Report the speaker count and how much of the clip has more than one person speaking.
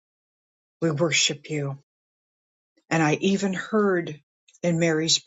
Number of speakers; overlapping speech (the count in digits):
1, no overlap